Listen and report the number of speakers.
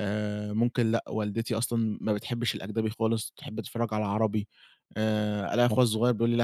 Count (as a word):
one